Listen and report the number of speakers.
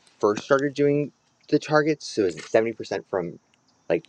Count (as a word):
one